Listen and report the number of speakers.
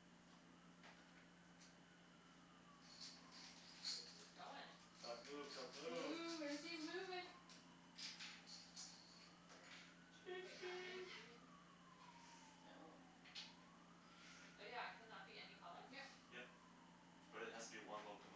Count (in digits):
4